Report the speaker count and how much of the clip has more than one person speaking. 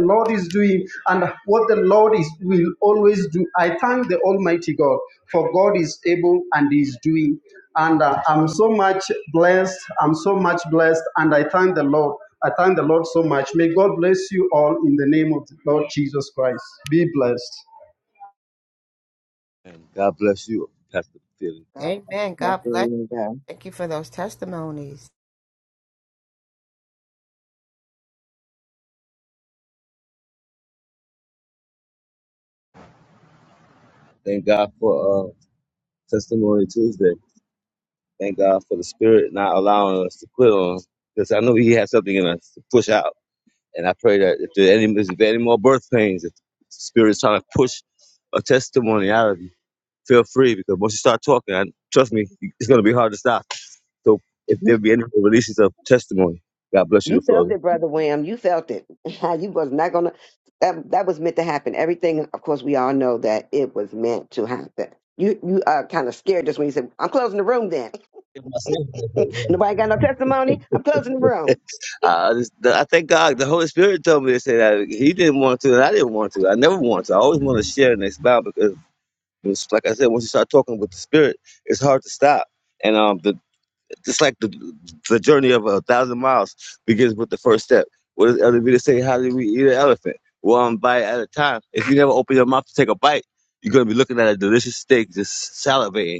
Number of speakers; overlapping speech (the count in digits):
4, about 1%